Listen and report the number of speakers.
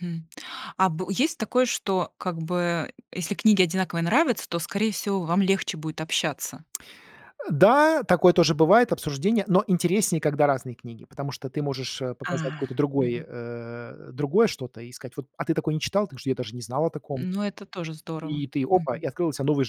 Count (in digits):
2